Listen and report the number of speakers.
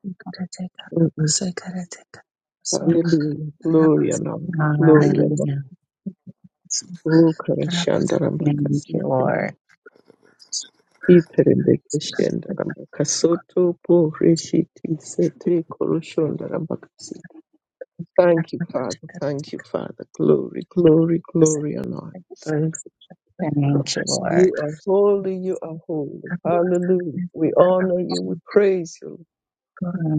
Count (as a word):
three